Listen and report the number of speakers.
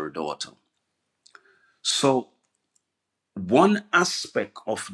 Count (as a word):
one